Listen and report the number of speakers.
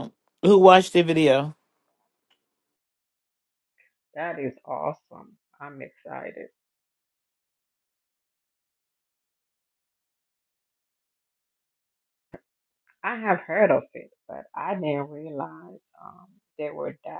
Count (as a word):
two